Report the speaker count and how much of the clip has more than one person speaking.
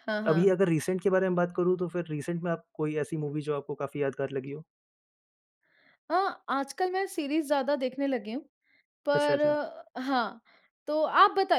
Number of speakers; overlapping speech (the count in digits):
2, about 6%